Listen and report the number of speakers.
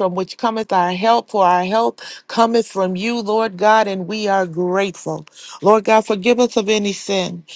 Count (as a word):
one